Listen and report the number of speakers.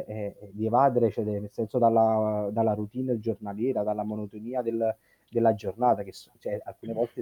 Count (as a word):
one